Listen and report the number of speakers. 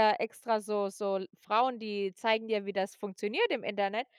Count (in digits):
1